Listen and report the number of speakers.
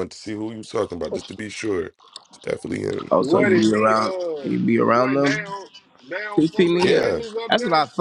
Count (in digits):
3